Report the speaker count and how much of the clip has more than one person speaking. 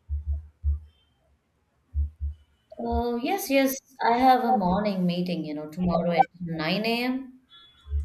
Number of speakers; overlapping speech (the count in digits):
1, no overlap